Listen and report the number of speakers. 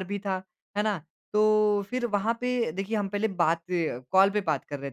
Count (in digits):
1